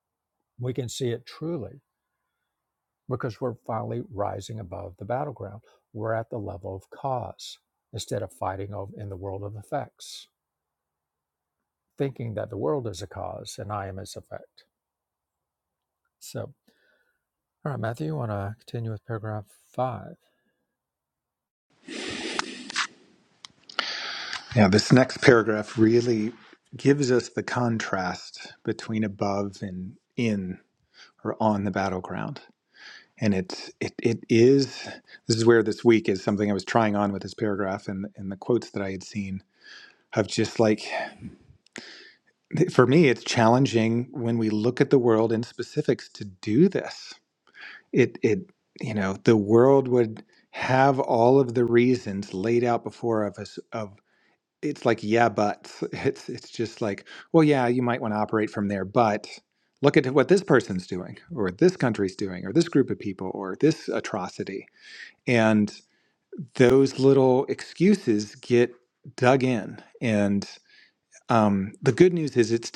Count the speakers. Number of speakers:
2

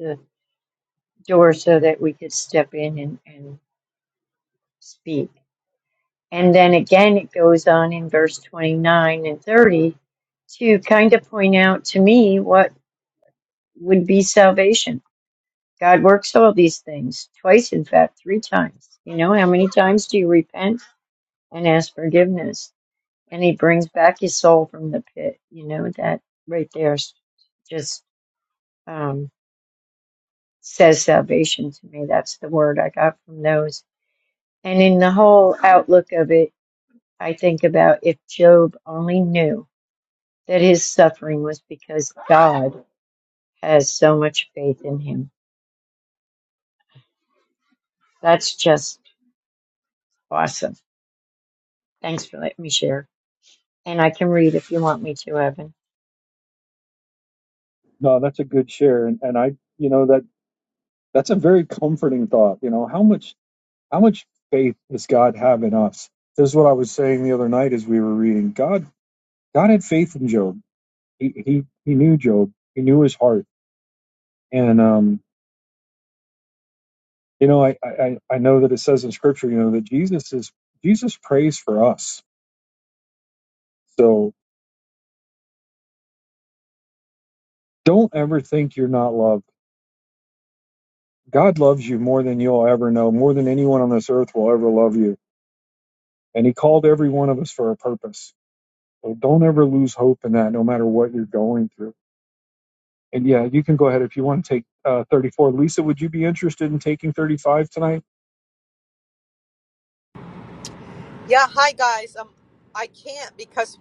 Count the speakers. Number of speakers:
3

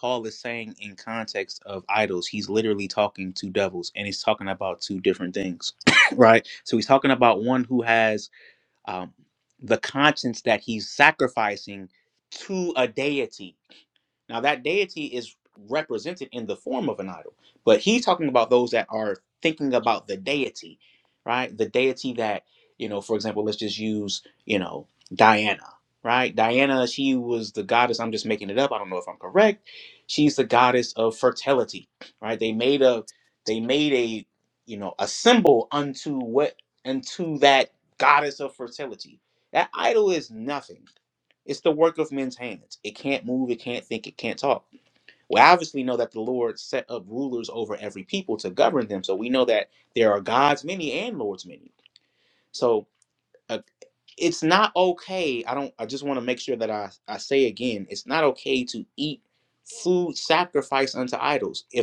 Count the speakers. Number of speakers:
1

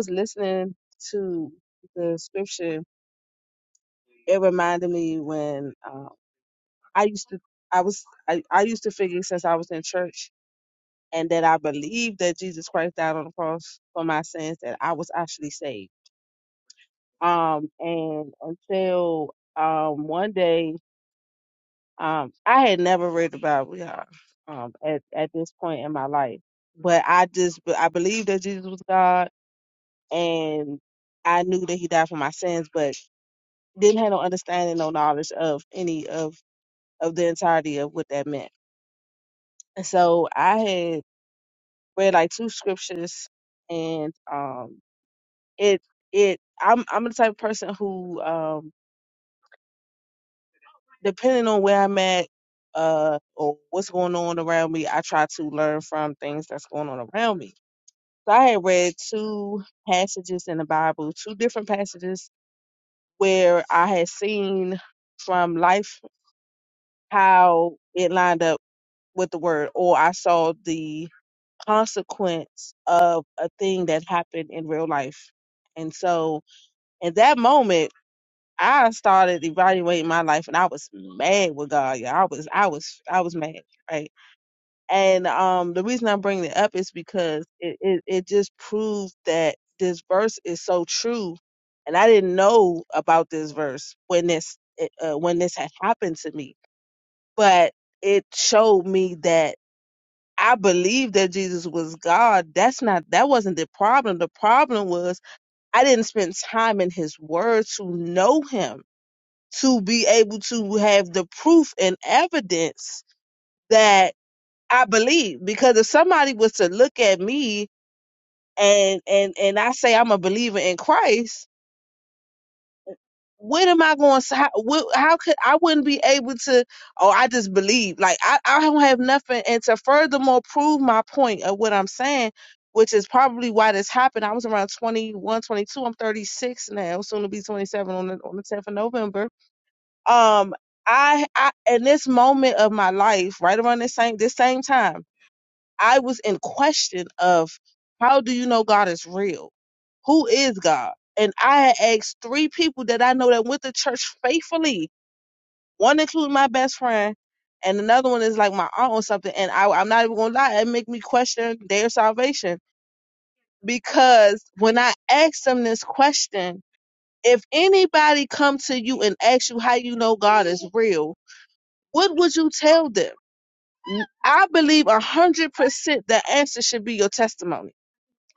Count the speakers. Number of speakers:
1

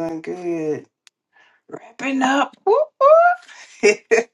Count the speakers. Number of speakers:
1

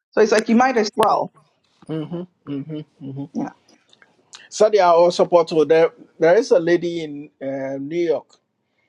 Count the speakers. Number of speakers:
2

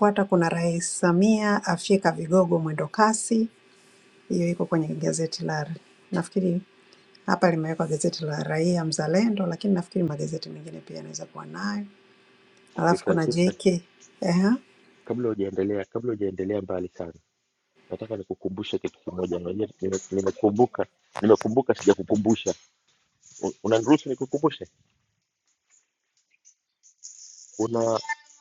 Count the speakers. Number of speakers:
2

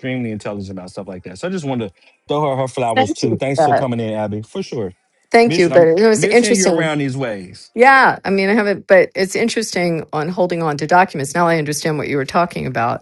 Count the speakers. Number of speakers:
2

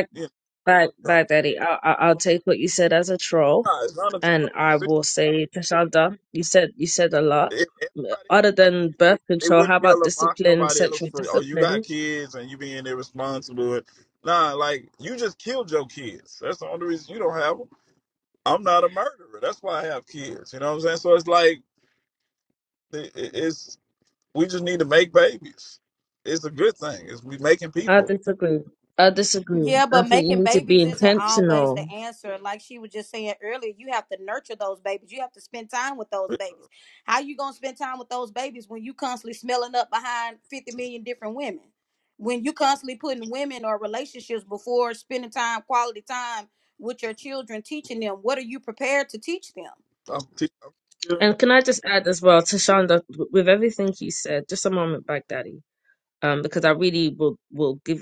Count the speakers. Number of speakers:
3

